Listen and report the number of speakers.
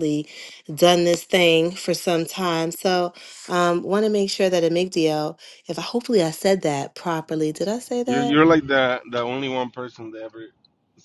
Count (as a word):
two